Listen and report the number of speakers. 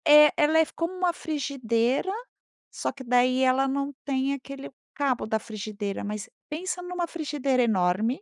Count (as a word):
one